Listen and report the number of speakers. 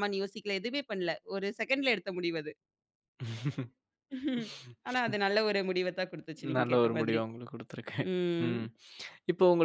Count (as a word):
two